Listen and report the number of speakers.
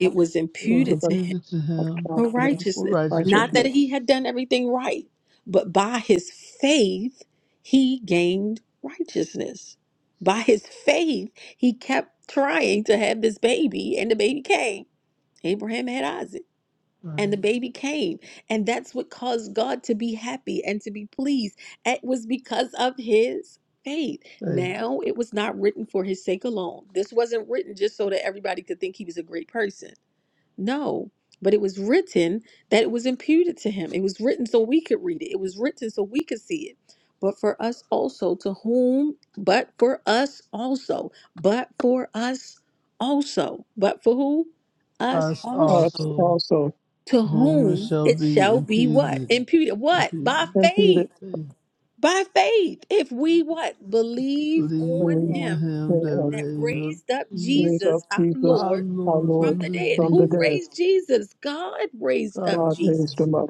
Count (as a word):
three